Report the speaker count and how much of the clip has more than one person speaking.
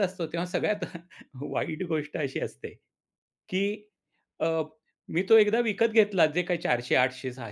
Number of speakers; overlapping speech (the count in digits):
1, no overlap